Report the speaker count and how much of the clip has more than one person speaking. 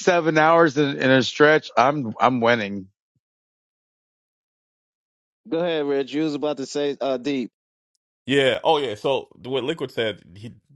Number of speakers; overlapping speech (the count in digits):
3, no overlap